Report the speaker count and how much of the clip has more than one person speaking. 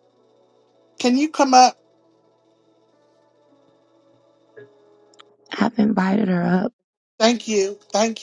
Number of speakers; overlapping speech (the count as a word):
two, no overlap